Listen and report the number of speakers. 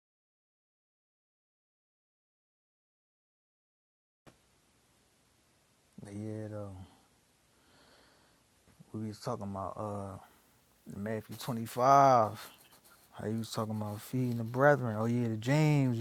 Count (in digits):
1